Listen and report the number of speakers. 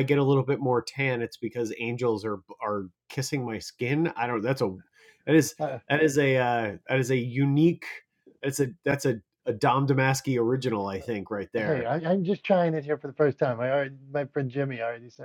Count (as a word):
two